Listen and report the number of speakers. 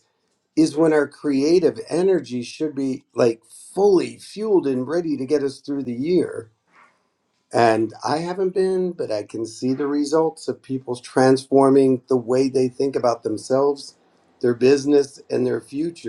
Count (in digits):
1